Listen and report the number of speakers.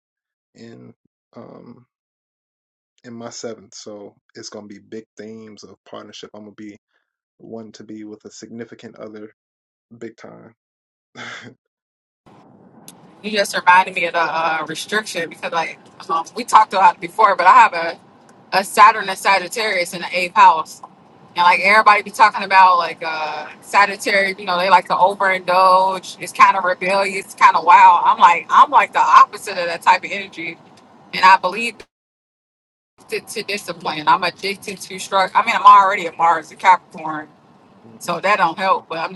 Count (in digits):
2